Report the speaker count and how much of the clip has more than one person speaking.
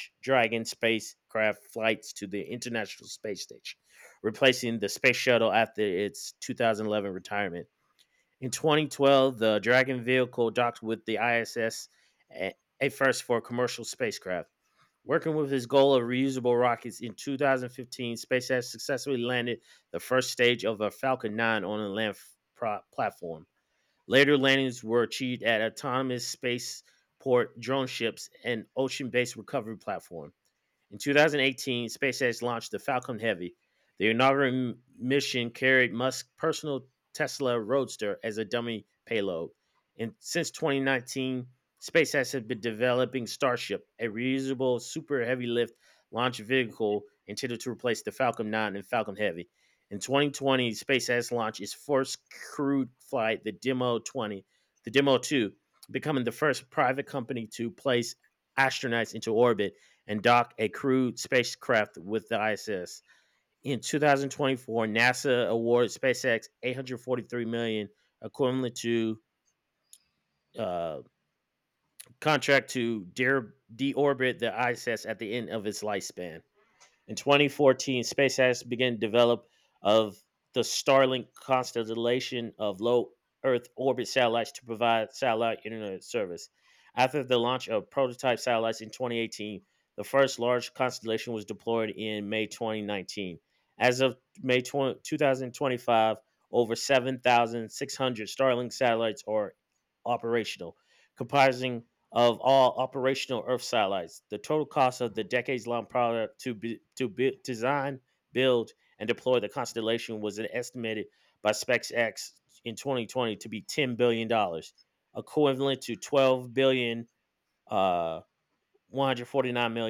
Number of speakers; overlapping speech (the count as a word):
one, no overlap